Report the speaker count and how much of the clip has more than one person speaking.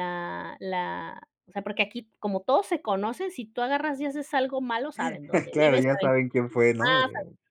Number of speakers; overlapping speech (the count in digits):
2, about 9%